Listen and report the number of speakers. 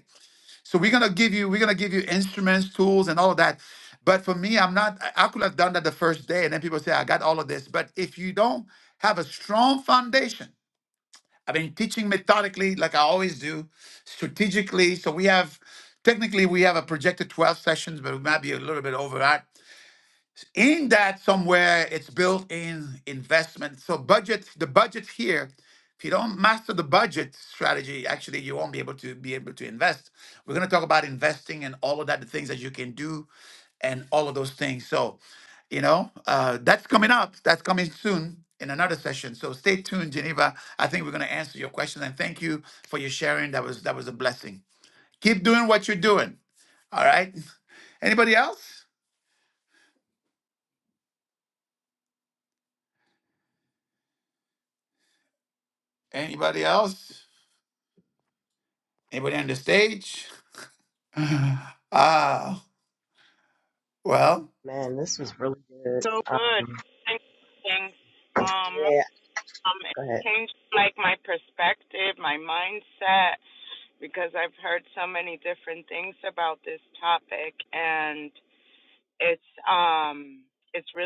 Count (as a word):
three